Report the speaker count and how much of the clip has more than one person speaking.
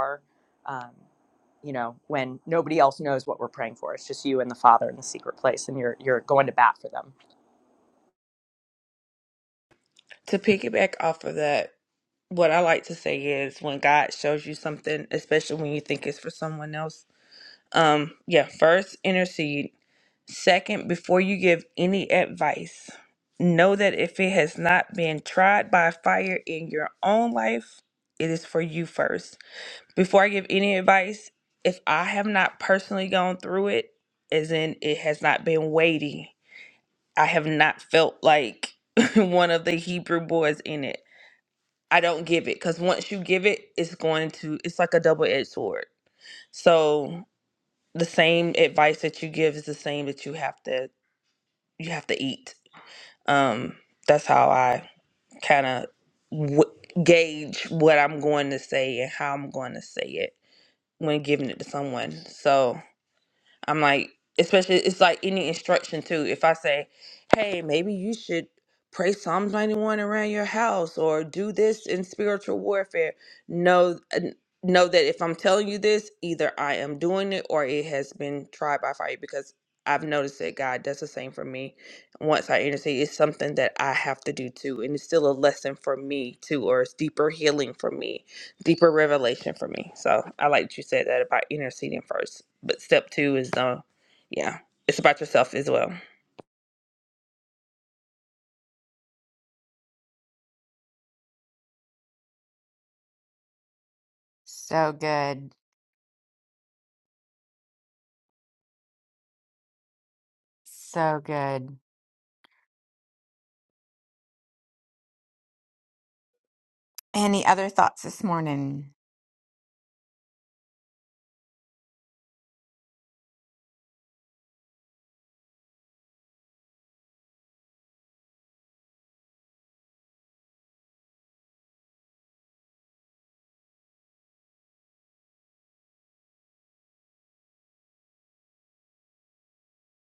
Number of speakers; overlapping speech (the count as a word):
three, no overlap